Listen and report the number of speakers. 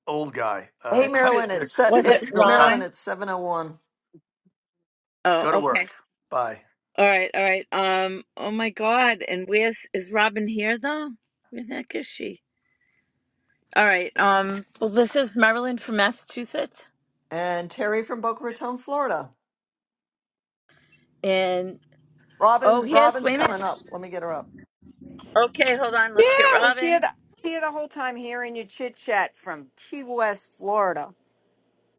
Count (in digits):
4